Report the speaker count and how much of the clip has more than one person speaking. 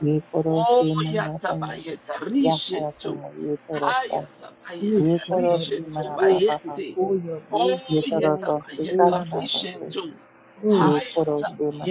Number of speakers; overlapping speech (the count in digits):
3, about 70%